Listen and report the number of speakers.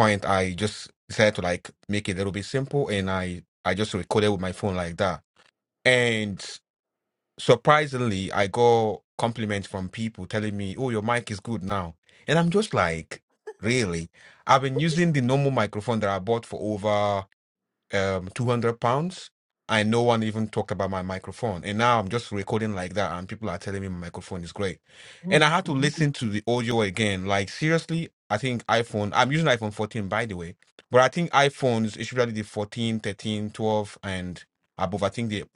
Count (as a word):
one